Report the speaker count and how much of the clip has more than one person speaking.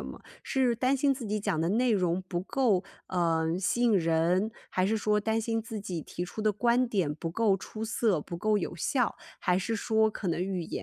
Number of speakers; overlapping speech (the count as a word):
one, no overlap